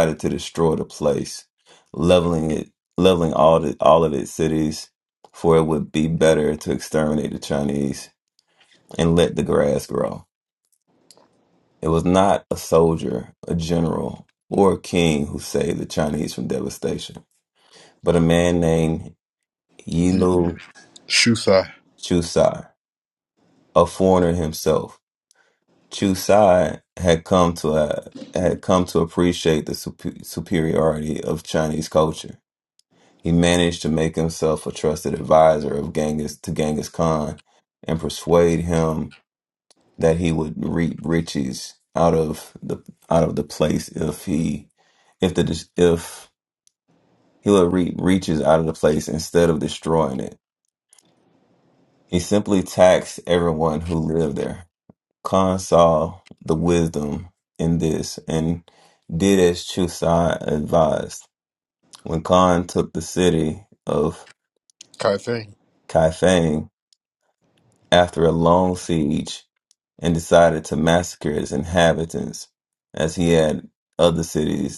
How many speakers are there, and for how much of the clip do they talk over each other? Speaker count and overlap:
two, under 1%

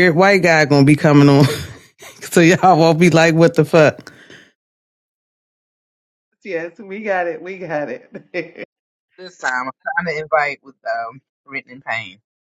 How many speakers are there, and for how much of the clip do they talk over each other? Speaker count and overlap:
three, no overlap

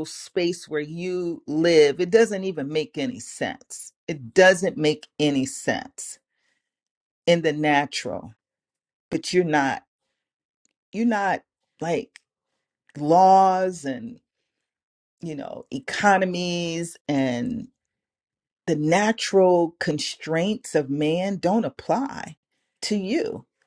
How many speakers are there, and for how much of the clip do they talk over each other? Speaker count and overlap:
one, no overlap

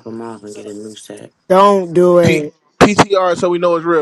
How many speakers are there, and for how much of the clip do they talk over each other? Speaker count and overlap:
three, about 5%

